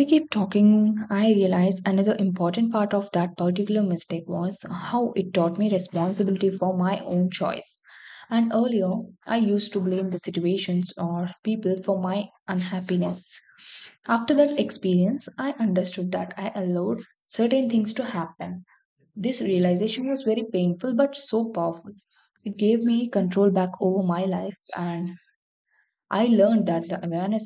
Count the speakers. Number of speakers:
one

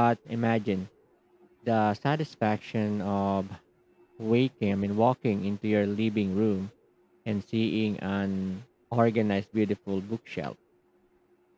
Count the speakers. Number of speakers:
one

